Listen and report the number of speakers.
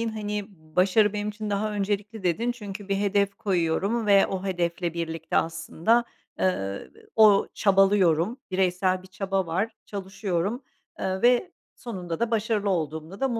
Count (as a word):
one